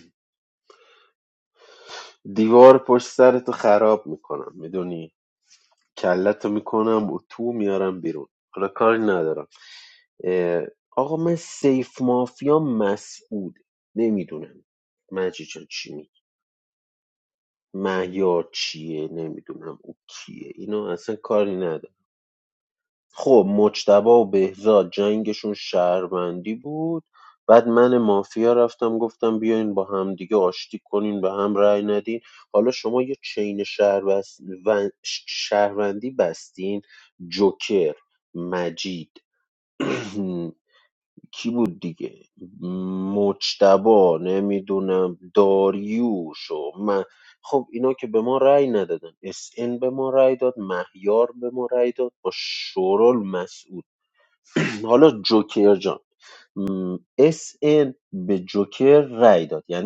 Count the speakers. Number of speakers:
one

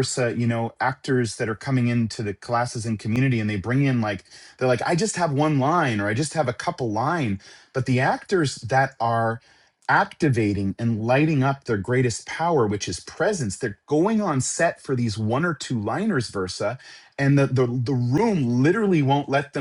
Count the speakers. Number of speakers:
one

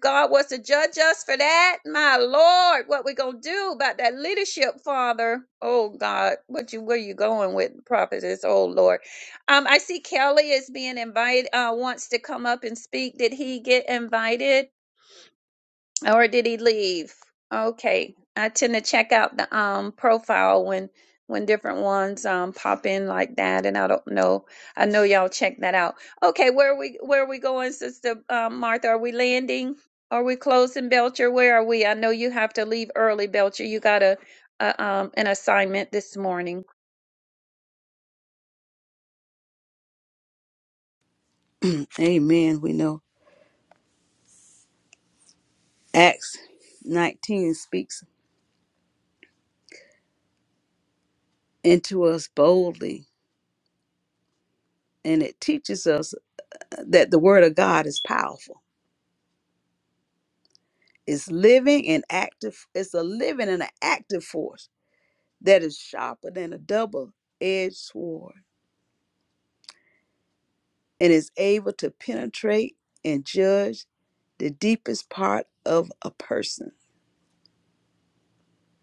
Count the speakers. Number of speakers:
two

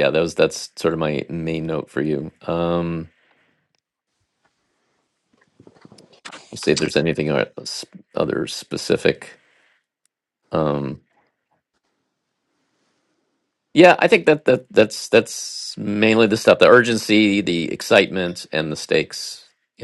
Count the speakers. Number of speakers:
one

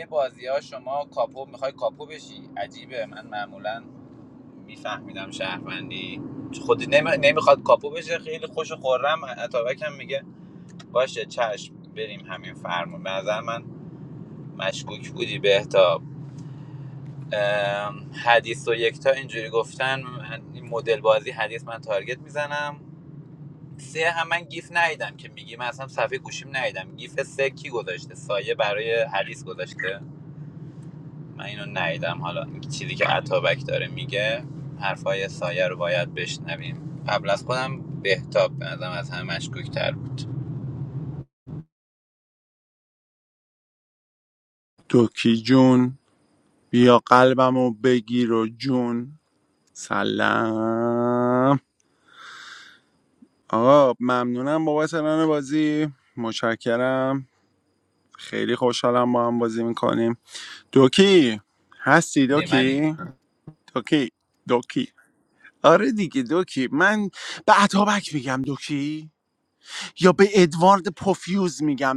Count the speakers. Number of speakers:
two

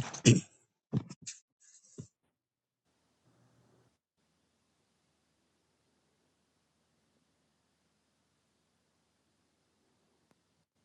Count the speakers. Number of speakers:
zero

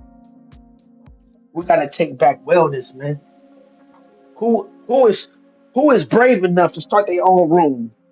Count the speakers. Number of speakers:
one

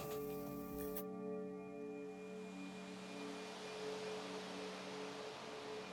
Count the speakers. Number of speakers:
zero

